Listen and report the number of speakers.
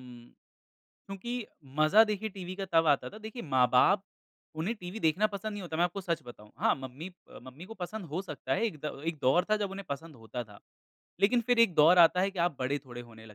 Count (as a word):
one